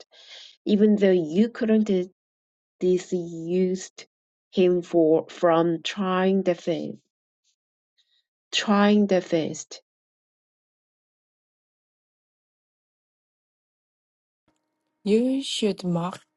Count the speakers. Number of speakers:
two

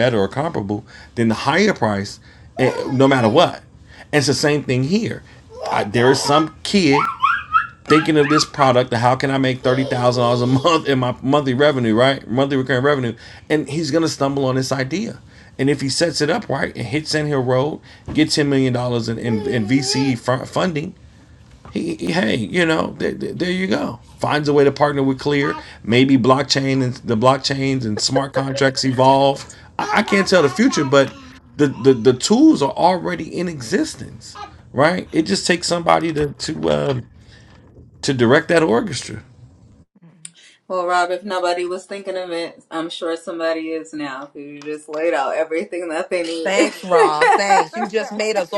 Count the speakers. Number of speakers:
three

